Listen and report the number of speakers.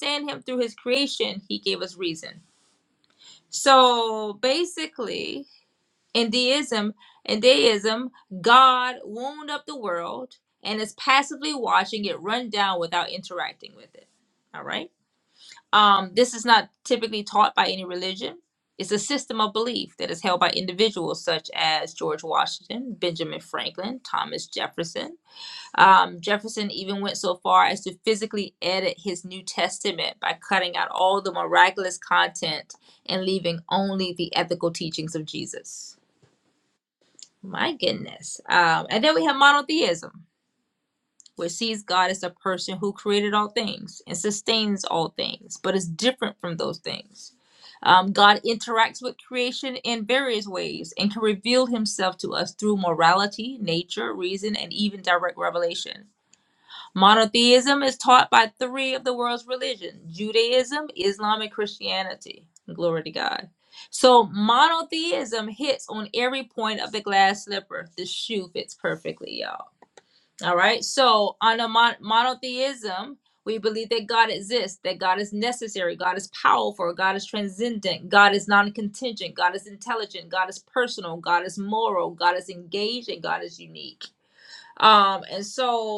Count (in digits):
1